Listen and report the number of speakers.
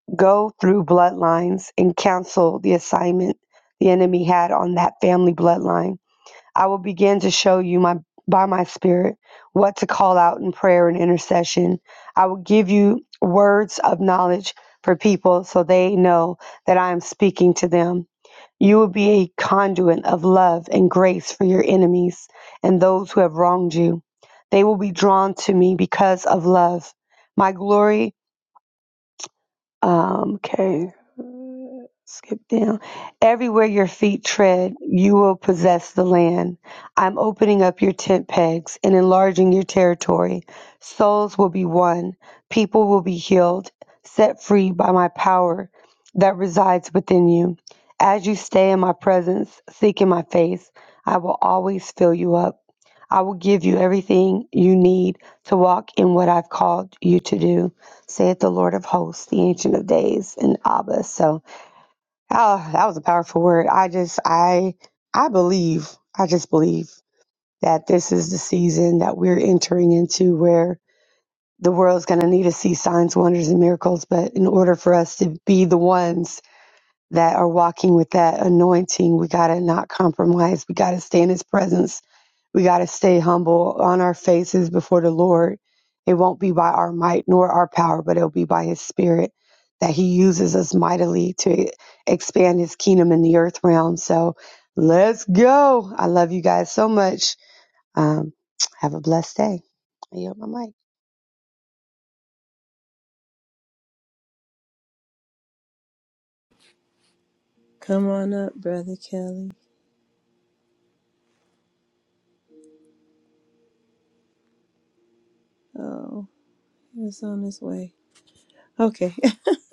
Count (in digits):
2